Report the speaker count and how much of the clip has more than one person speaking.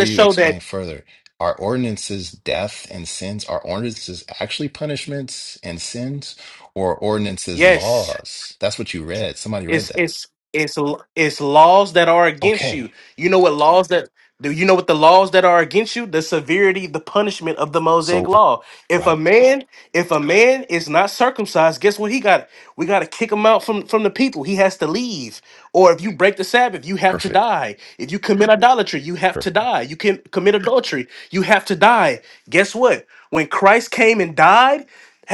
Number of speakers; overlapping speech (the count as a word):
two, about 9%